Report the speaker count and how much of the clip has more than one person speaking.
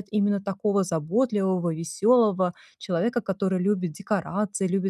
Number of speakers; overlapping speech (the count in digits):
1, no overlap